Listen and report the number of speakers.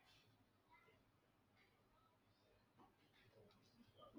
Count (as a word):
zero